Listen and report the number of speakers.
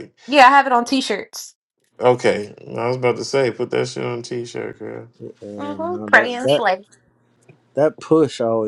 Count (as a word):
three